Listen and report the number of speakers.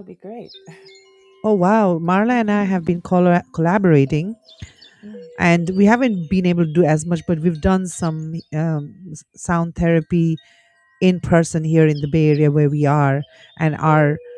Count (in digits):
2